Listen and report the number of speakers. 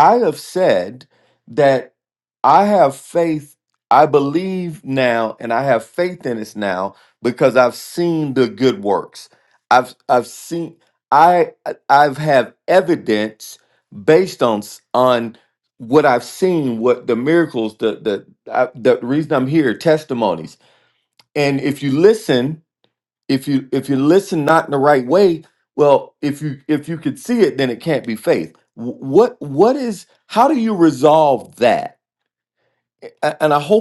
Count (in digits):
1